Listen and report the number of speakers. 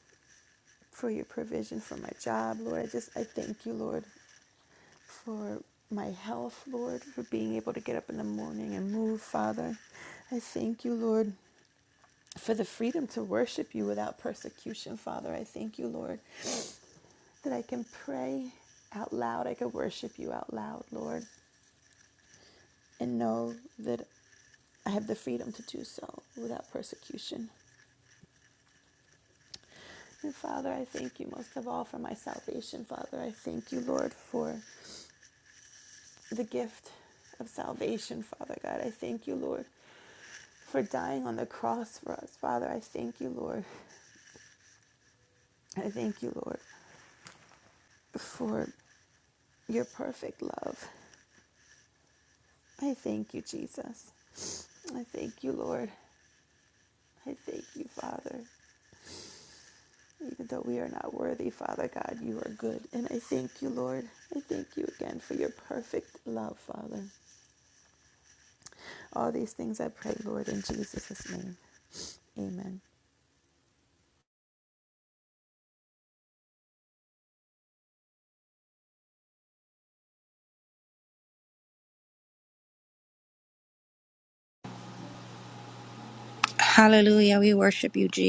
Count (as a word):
two